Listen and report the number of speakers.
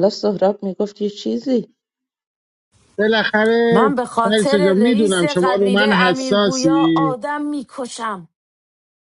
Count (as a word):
three